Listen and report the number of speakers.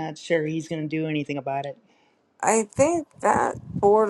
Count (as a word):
two